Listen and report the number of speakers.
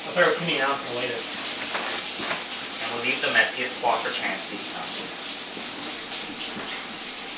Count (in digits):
2